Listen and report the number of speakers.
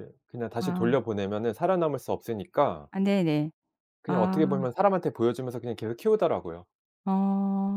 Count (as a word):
two